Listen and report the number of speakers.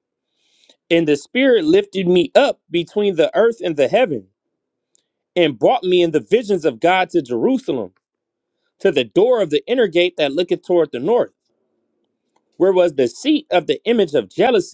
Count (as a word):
one